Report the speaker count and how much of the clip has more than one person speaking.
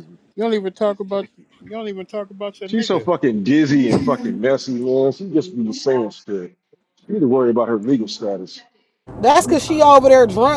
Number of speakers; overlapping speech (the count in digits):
3, about 4%